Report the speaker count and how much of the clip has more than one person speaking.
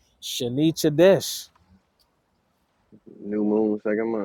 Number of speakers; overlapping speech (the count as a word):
two, no overlap